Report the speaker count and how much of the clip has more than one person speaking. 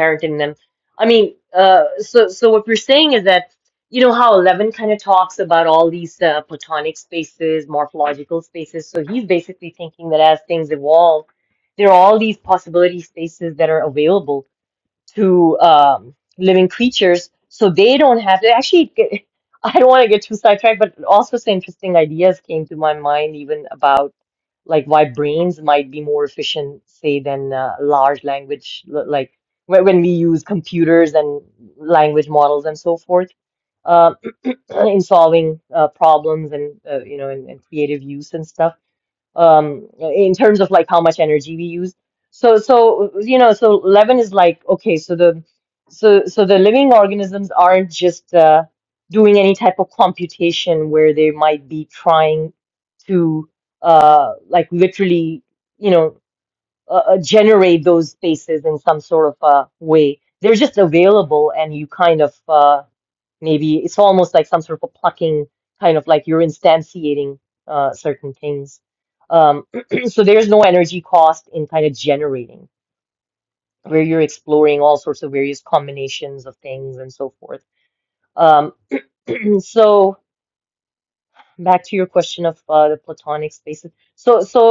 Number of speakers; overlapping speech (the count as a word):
one, no overlap